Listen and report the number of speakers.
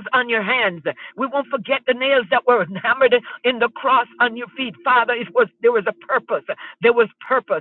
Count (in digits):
1